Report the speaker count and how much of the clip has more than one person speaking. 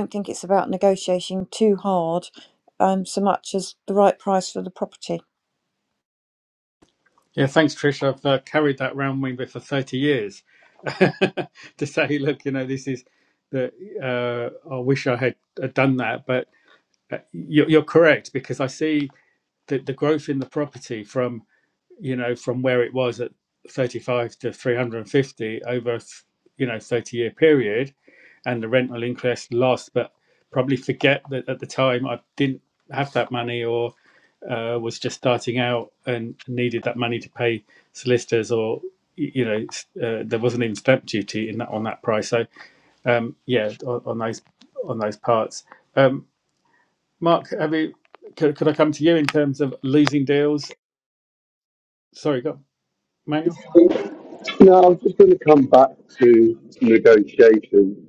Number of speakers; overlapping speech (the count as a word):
three, no overlap